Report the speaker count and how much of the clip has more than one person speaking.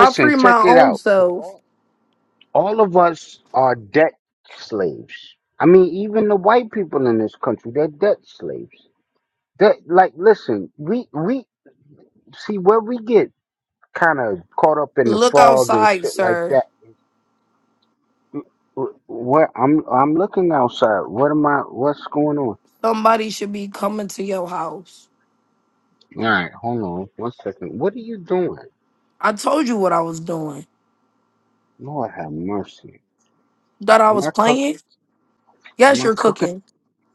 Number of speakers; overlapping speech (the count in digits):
2, about 10%